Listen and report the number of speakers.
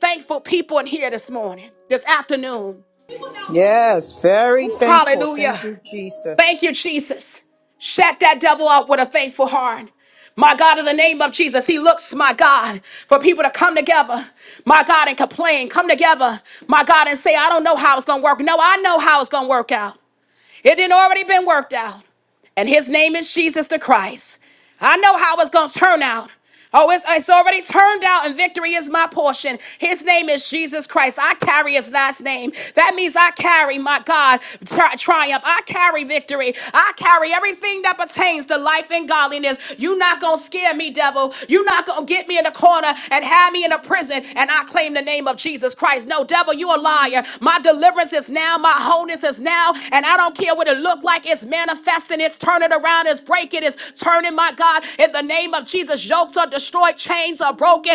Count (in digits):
2